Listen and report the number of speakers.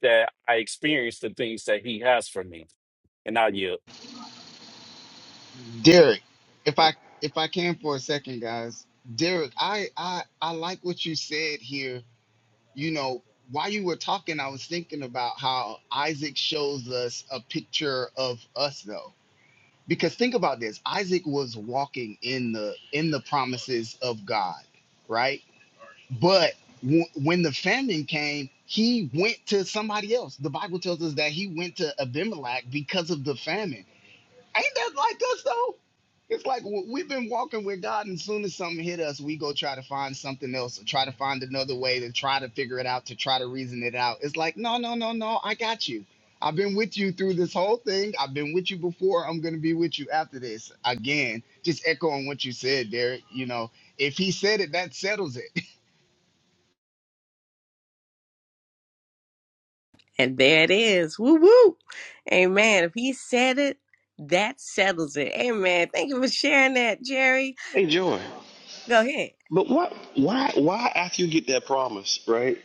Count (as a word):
four